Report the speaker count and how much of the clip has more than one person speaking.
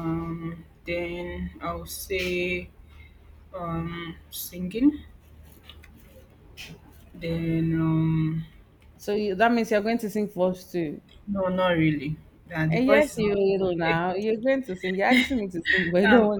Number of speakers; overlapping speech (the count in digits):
2, about 10%